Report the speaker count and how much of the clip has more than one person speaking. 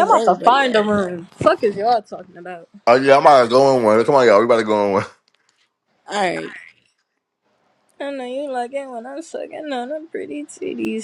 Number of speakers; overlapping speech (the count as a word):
three, about 7%